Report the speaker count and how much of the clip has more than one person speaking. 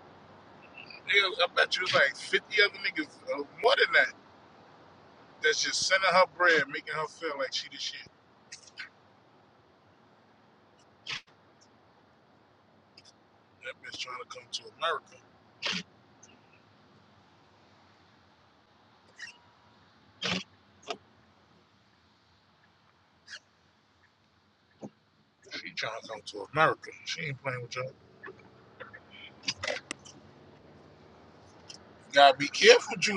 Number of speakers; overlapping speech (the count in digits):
1, no overlap